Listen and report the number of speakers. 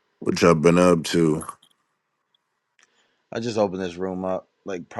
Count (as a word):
two